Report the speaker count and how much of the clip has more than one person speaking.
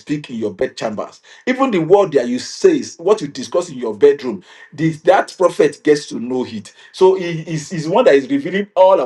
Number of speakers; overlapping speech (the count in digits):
1, no overlap